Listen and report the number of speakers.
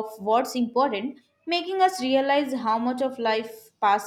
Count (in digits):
1